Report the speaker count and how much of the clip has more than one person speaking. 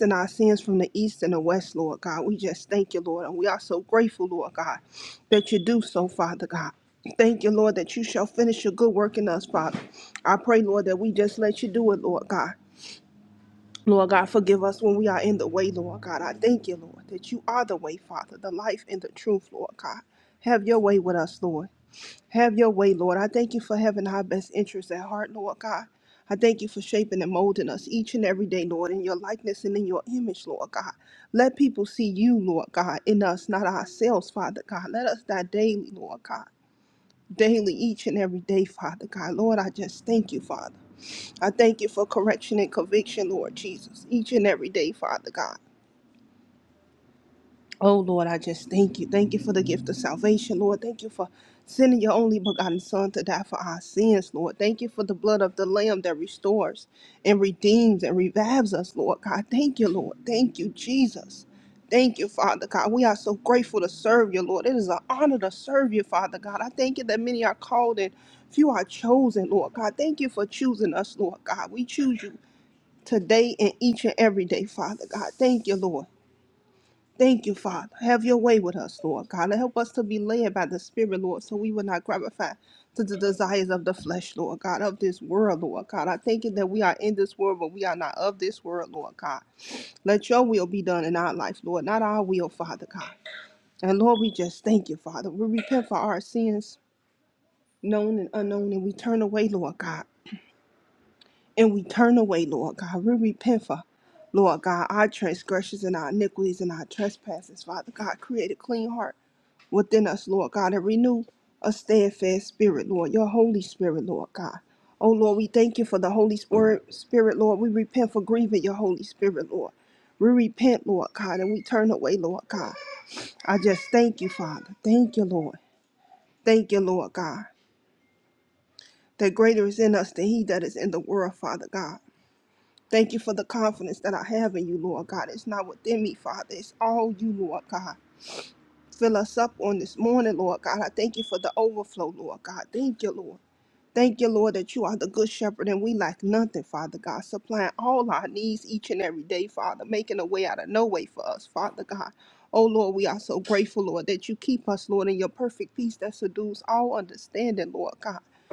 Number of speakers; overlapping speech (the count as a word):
one, no overlap